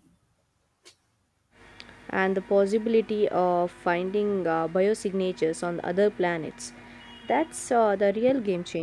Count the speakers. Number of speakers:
1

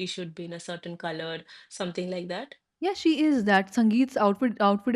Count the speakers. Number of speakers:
2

